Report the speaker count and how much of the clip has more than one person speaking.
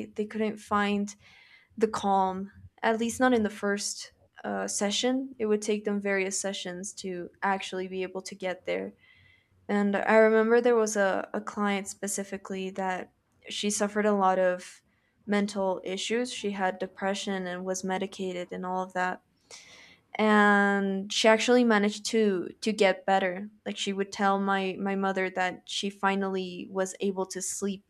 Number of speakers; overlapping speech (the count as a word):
one, no overlap